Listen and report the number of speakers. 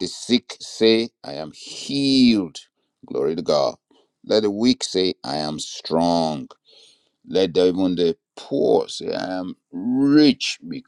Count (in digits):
1